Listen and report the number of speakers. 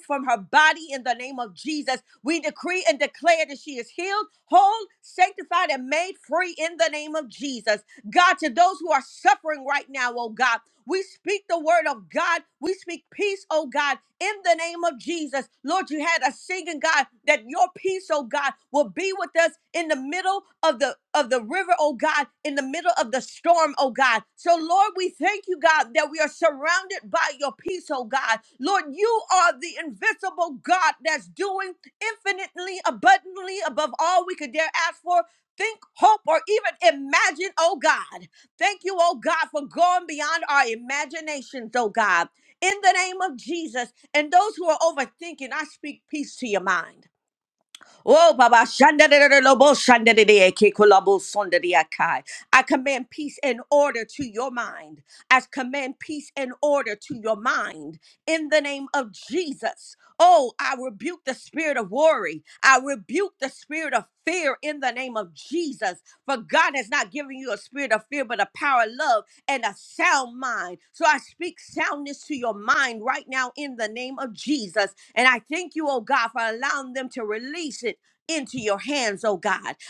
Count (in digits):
1